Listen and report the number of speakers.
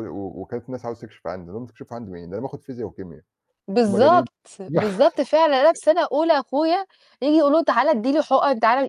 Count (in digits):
2